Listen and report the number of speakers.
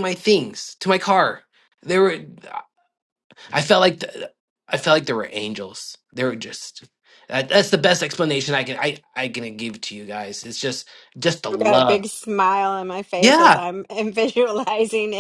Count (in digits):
2